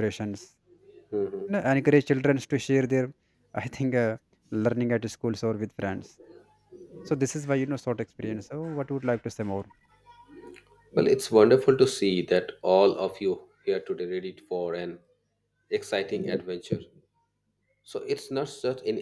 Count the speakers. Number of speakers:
two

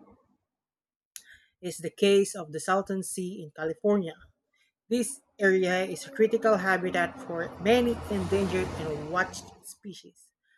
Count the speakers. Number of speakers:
one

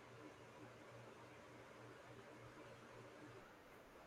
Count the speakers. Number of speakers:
zero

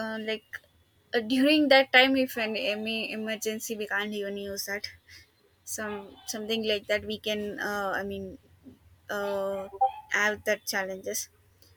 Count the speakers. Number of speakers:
one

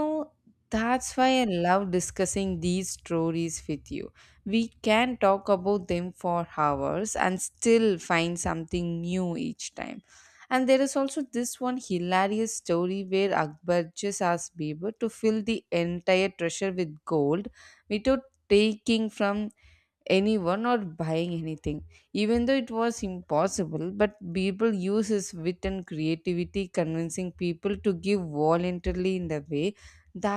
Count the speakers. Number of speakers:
one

